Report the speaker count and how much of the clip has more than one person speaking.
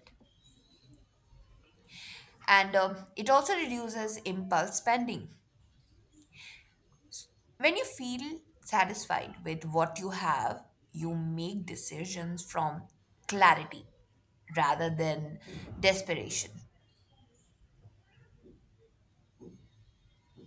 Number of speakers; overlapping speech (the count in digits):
1, no overlap